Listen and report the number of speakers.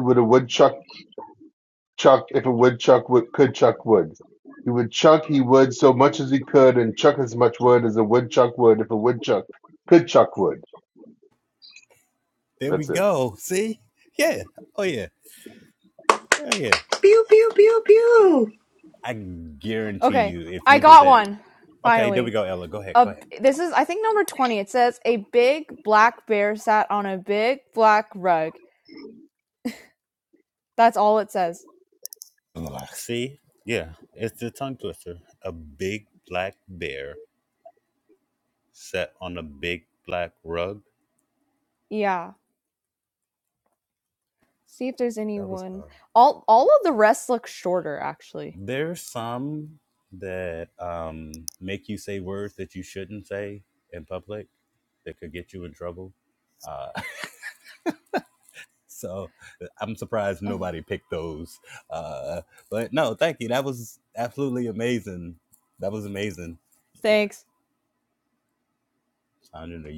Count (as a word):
four